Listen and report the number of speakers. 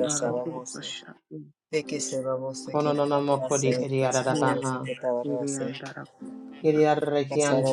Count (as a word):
three